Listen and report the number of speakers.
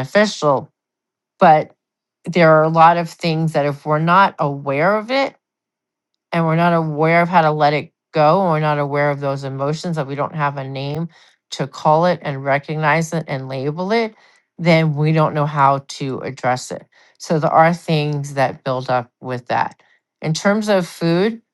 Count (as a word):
one